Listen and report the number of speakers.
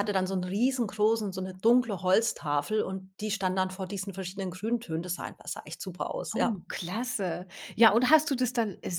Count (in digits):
2